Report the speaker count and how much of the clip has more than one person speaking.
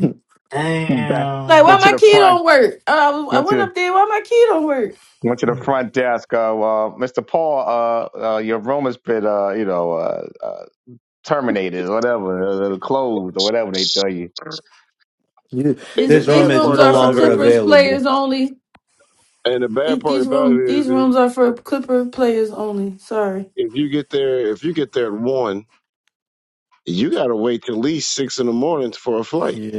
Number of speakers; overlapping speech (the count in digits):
5, about 16%